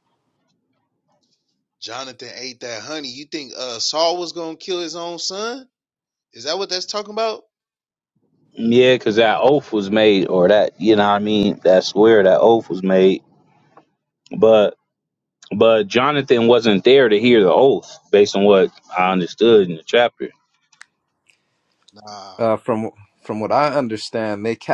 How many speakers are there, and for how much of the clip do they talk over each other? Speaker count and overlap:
3, no overlap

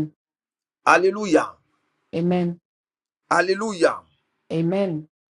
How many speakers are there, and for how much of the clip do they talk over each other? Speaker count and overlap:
2, no overlap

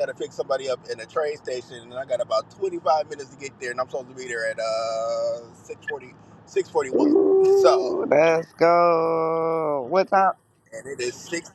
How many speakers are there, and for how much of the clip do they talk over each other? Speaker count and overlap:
2, about 2%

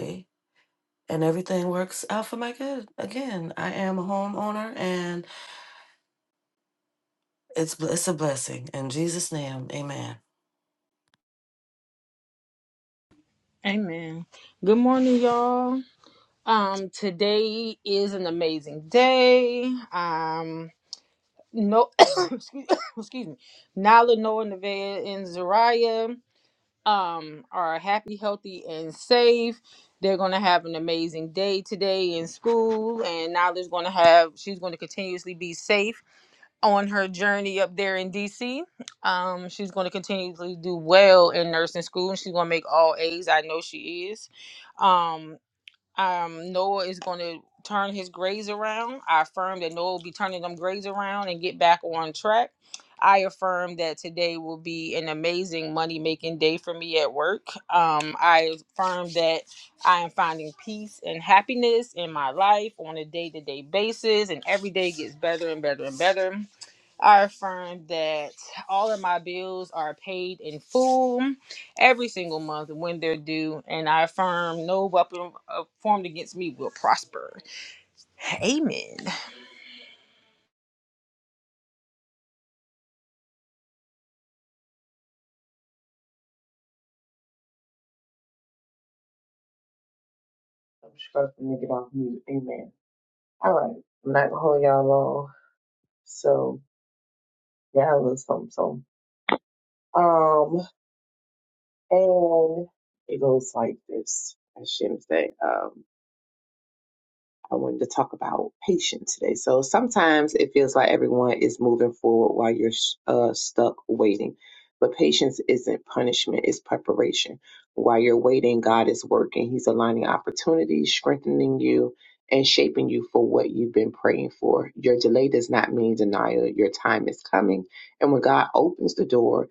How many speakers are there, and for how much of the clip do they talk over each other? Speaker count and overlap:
3, no overlap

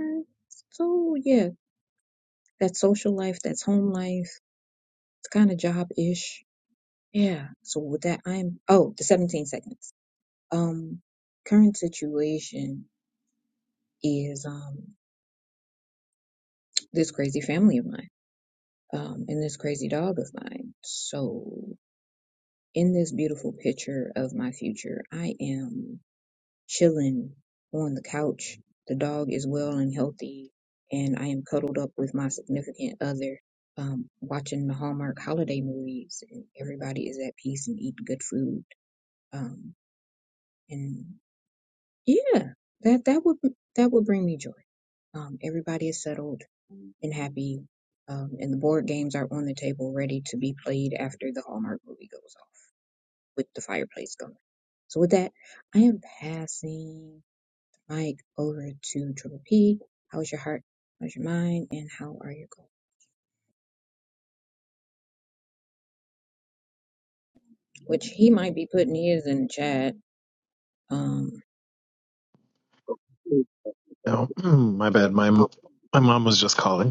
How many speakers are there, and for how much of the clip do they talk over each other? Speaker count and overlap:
2, no overlap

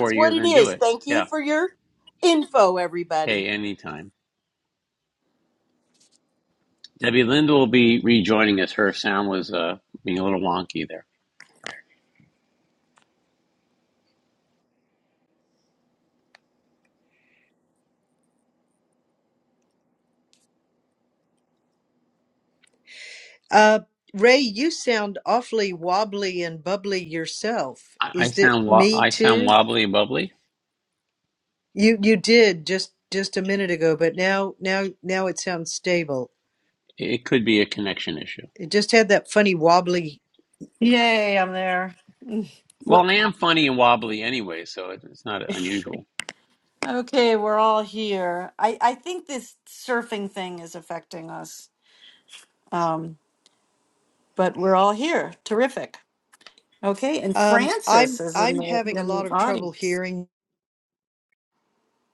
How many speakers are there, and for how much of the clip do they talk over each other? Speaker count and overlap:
4, about 9%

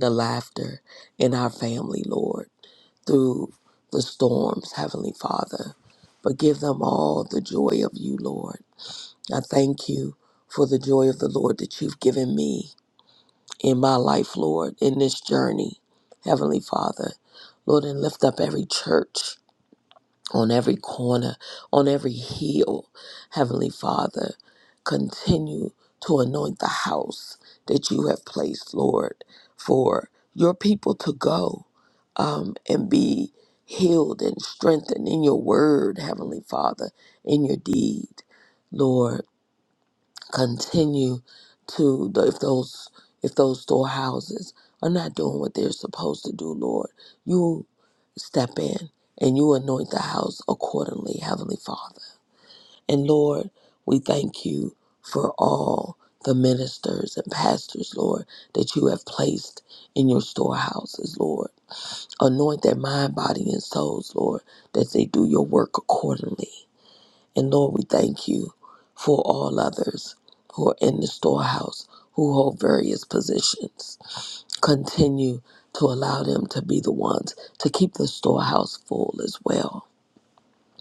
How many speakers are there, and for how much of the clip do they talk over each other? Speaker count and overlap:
1, no overlap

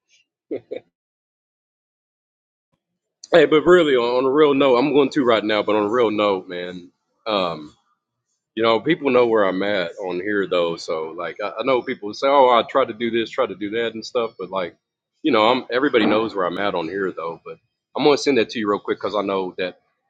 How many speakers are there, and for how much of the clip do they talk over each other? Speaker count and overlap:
1, no overlap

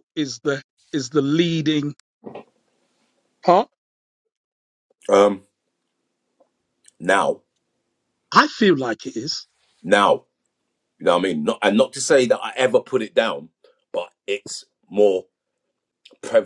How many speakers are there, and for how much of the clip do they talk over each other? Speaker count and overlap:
2, no overlap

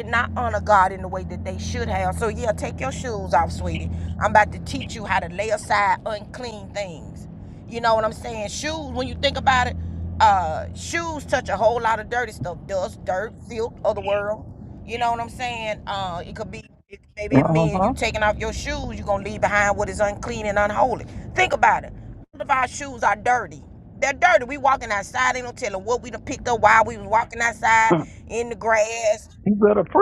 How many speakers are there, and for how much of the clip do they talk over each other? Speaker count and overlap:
2, about 2%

